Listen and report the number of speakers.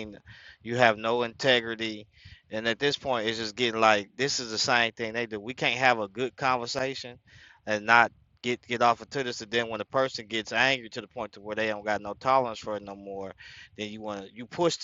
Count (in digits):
1